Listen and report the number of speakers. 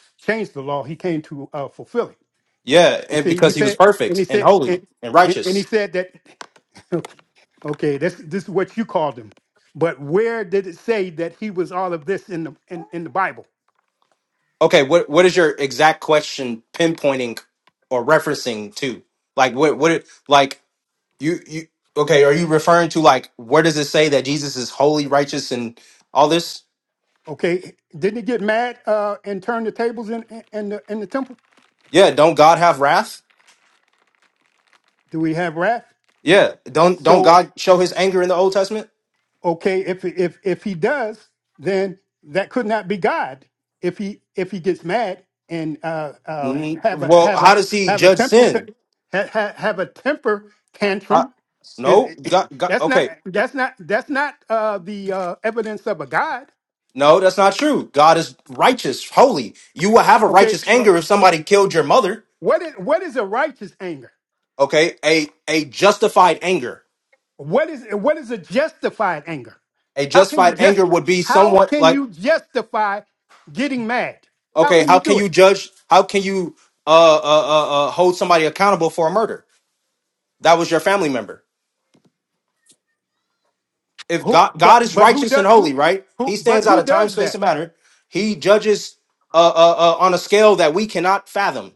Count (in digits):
2